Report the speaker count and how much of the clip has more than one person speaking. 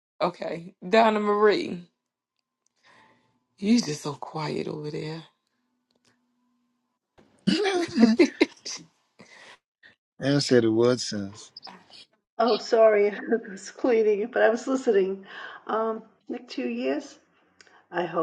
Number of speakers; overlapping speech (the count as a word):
three, no overlap